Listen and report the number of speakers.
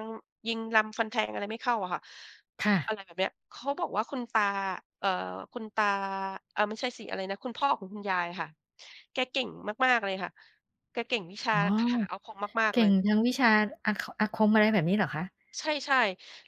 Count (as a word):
two